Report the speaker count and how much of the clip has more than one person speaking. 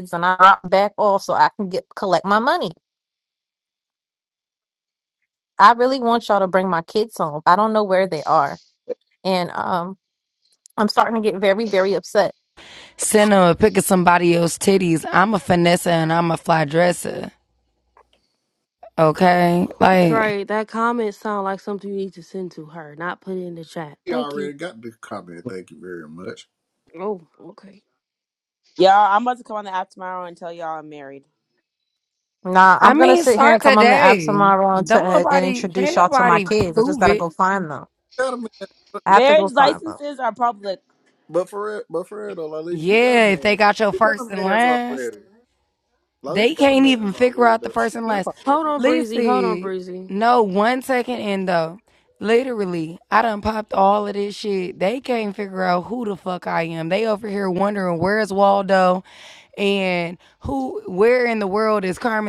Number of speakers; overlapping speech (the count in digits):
5, about 18%